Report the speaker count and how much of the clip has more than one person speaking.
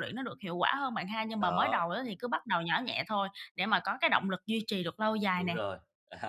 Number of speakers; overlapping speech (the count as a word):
two, about 10%